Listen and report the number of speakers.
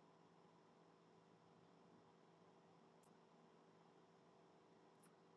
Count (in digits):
0